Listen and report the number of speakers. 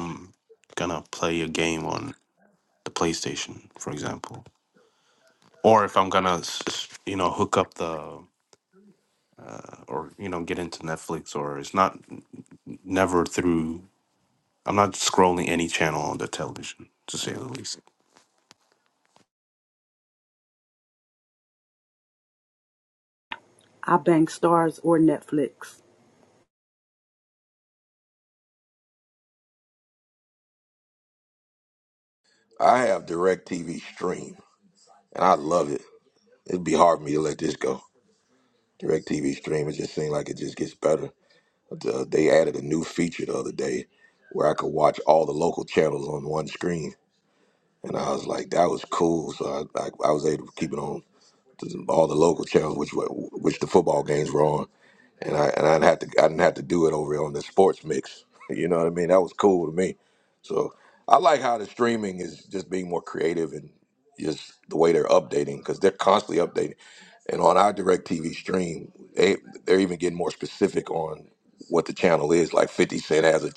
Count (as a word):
three